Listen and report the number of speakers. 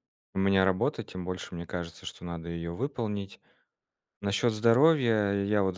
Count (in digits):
1